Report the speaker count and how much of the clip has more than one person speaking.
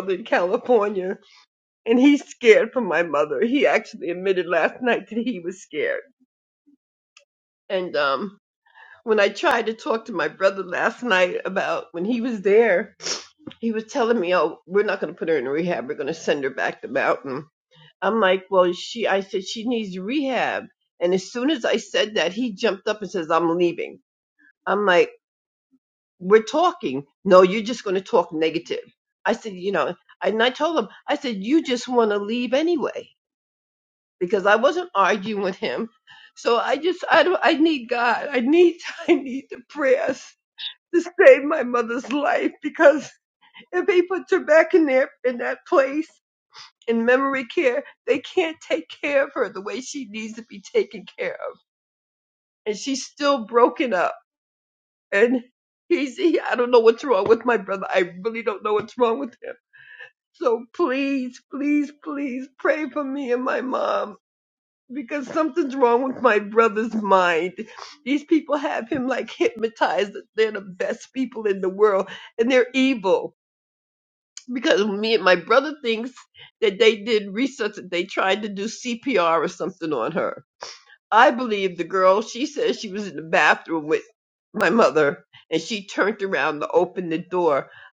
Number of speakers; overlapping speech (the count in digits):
1, no overlap